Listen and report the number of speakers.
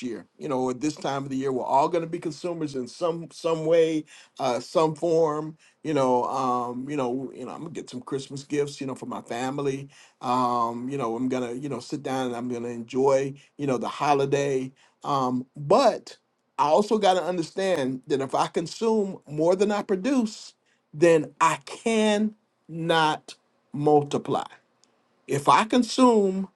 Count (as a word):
one